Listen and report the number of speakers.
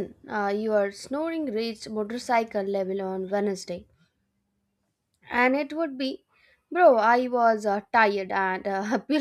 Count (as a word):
one